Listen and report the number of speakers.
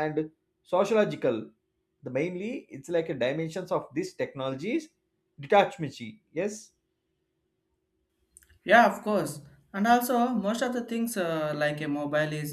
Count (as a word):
two